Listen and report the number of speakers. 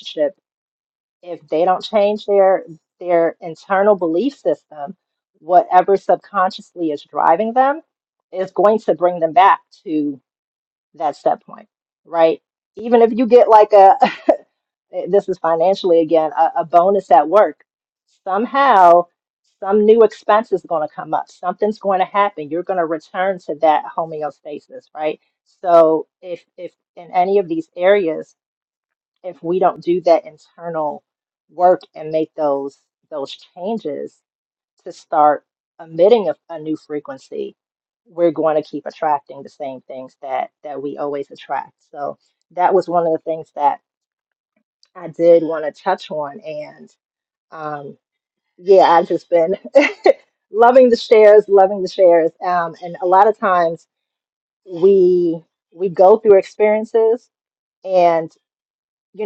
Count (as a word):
one